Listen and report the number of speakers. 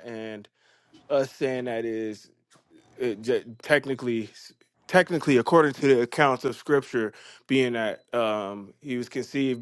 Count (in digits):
1